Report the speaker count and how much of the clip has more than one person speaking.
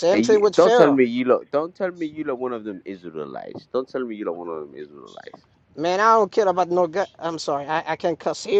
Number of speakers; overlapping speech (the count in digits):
2, about 10%